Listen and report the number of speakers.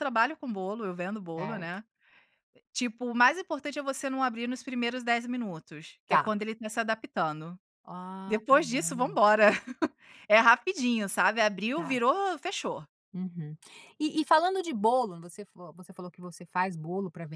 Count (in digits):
2